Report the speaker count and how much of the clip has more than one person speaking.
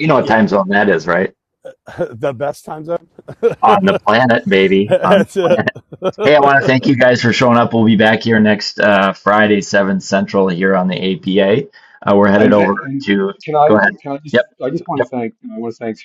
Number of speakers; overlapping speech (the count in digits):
3, about 13%